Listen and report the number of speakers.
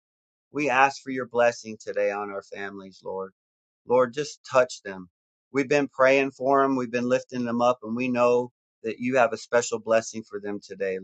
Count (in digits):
1